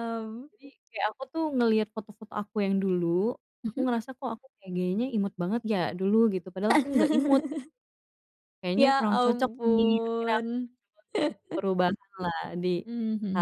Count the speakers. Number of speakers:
2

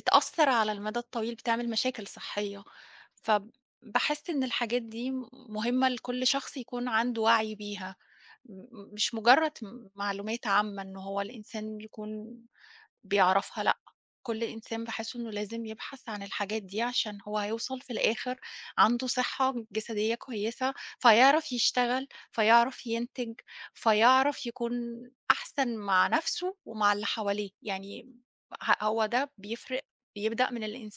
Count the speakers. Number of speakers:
1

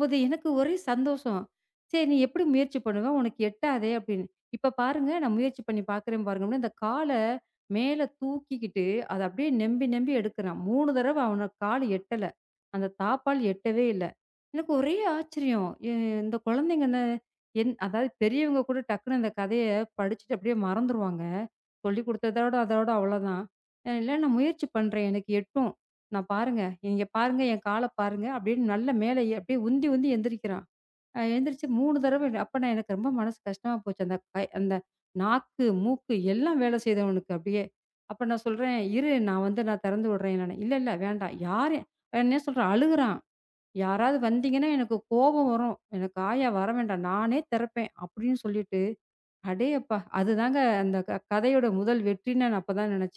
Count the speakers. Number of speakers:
1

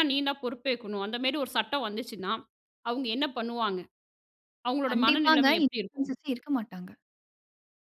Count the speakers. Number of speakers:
2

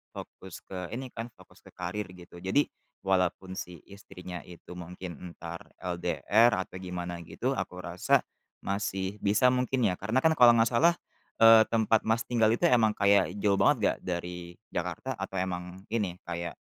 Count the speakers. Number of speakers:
1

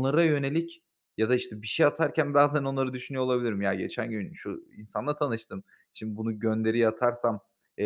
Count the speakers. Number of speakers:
1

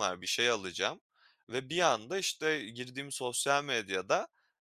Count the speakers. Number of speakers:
1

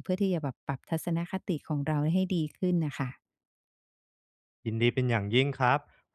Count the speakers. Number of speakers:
2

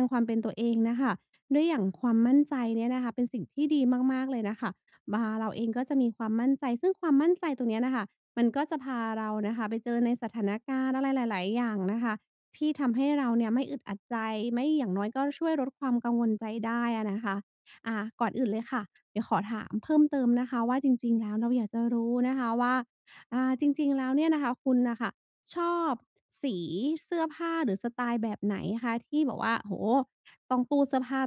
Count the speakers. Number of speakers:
1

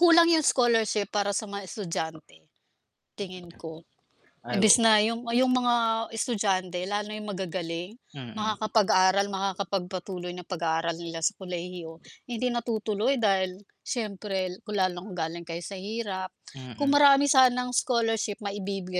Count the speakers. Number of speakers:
2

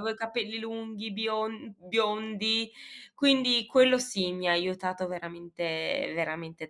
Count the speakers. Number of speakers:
1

